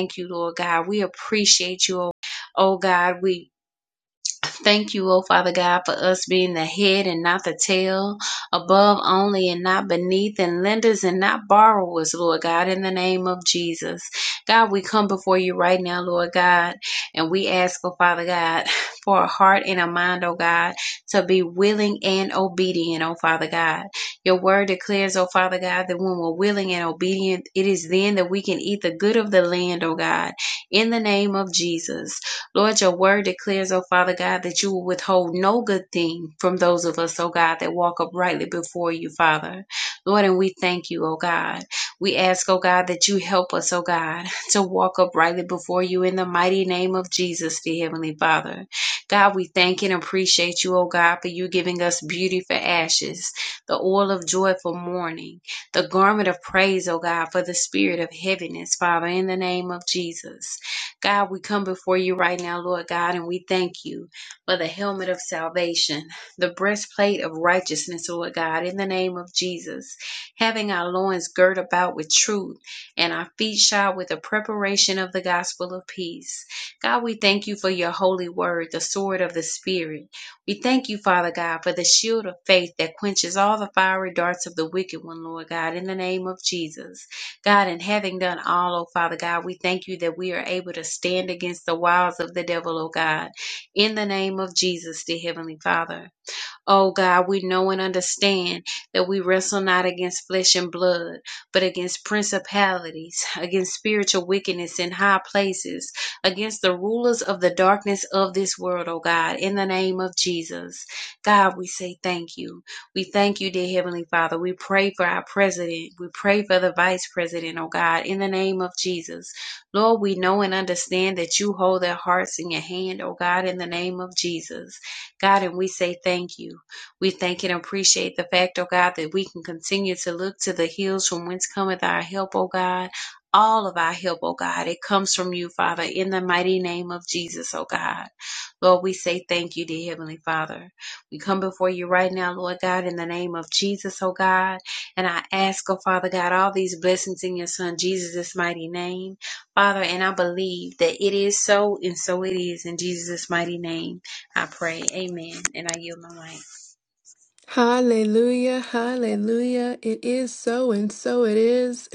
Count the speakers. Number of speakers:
two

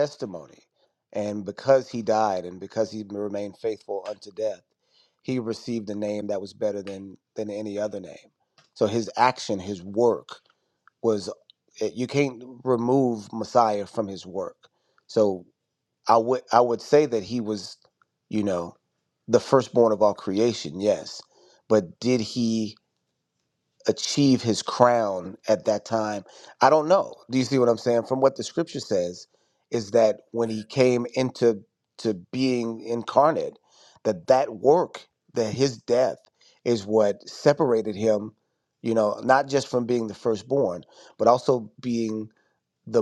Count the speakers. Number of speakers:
one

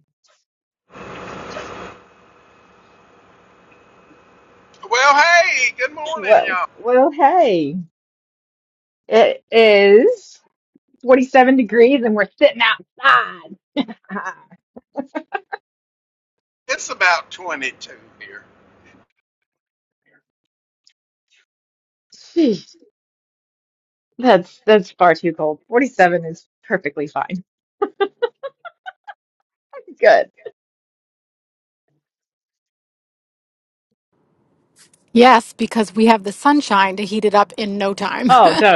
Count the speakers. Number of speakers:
three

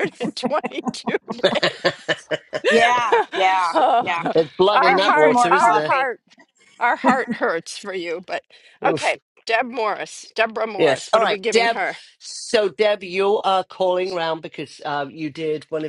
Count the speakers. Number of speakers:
three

